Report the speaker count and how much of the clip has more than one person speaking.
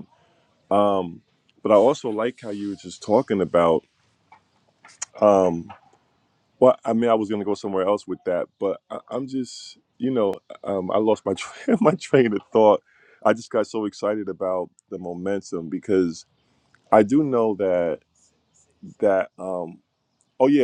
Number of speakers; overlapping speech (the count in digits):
1, no overlap